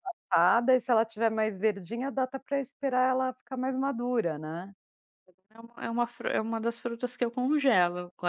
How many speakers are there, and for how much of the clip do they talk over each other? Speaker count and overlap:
2, no overlap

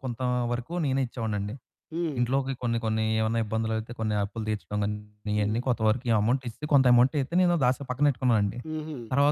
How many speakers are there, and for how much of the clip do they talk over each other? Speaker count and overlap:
2, about 3%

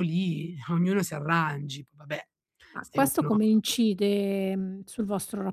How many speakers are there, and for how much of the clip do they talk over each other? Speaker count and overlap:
2, about 7%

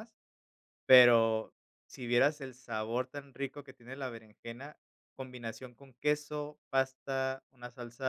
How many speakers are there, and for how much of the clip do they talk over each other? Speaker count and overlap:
1, no overlap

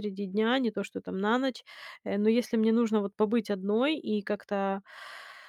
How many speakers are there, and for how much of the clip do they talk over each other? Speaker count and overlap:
1, no overlap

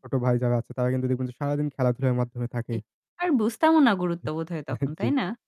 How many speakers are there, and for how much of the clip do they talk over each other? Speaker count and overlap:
2, about 9%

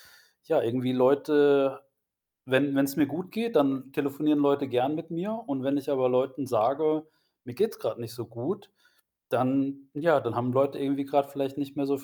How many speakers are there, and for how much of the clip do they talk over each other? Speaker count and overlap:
1, no overlap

